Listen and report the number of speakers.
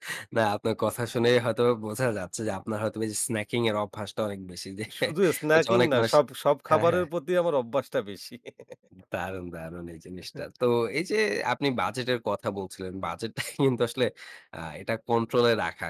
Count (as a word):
two